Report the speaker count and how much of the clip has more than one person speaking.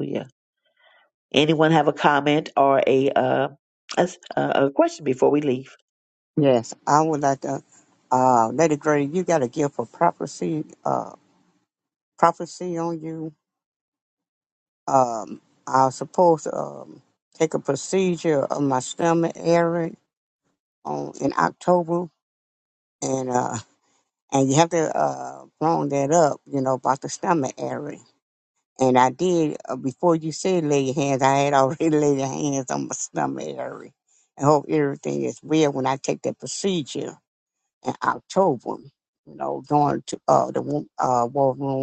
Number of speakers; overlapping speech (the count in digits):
2, no overlap